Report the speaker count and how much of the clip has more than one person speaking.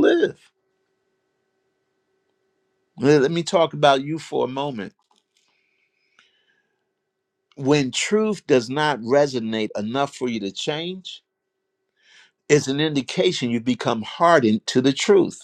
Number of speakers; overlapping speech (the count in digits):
1, no overlap